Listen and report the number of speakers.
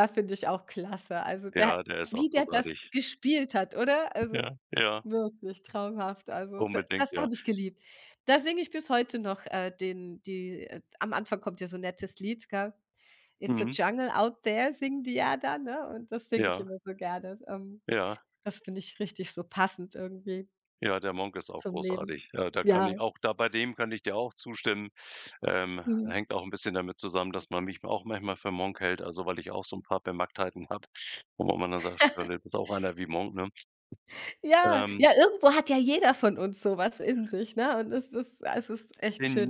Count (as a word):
two